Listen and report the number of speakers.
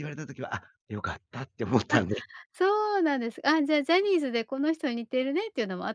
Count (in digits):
2